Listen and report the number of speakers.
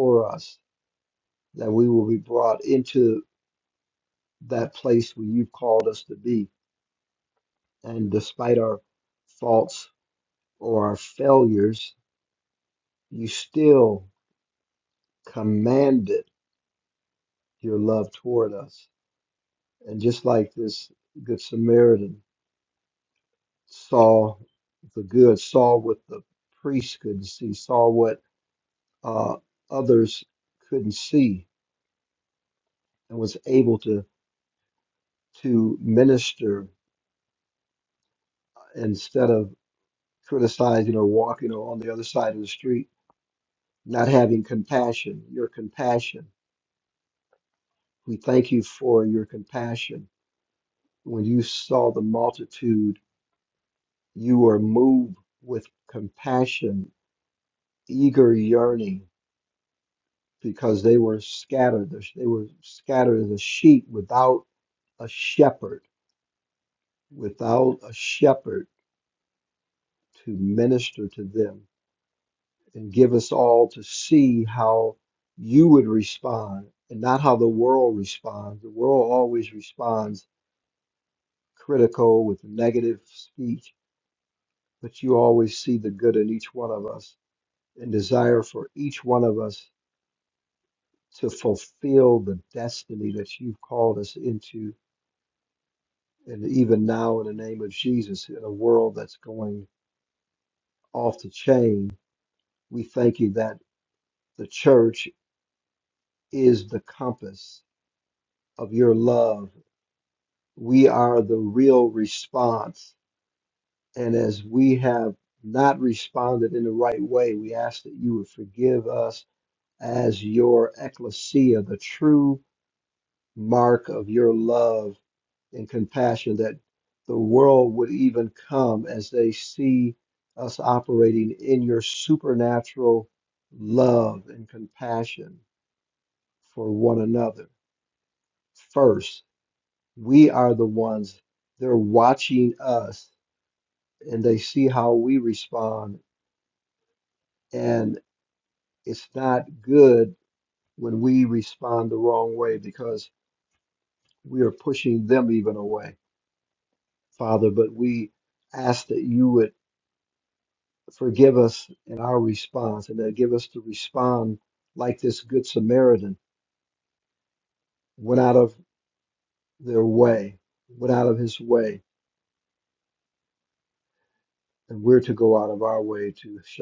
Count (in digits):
1